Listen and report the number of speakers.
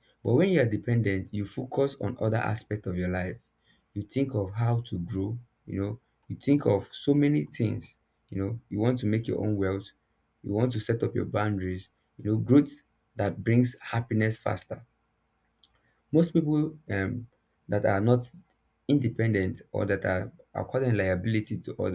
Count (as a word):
one